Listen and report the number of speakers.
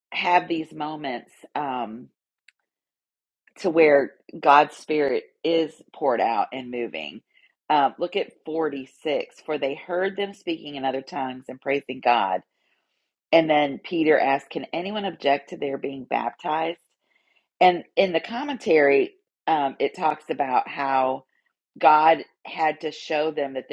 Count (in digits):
1